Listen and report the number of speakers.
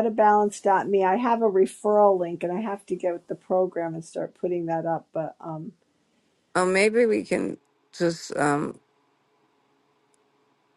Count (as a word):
two